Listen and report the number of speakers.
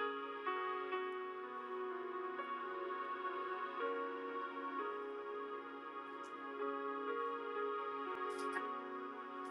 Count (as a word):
zero